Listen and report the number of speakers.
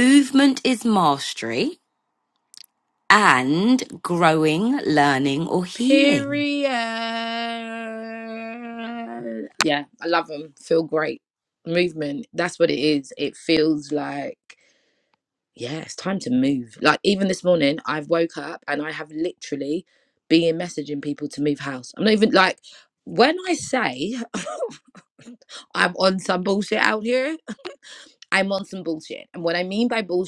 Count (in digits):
2